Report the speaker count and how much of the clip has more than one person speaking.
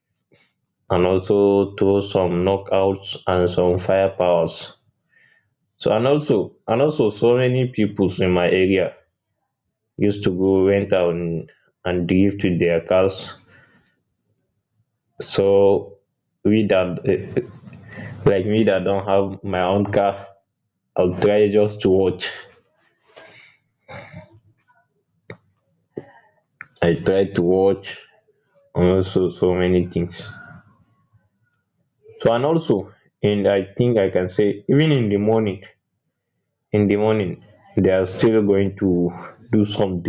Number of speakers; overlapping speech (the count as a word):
one, no overlap